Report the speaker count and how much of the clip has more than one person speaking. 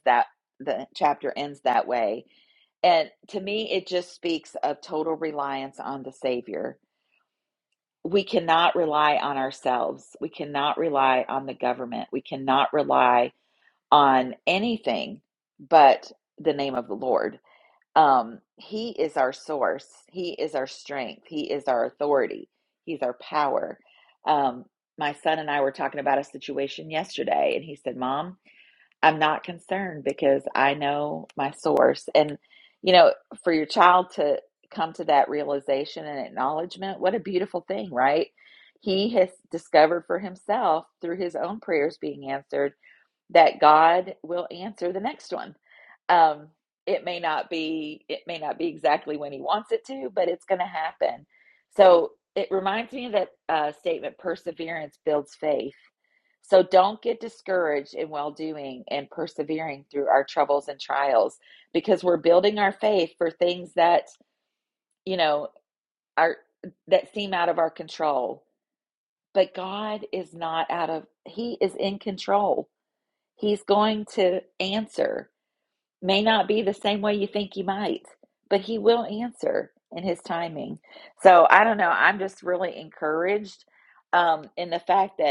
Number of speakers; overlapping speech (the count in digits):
1, no overlap